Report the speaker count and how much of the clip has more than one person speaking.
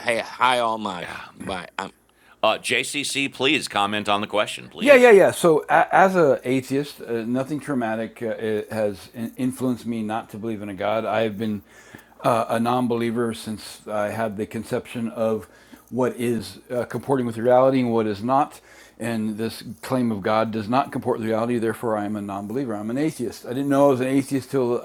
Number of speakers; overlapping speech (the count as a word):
three, about 1%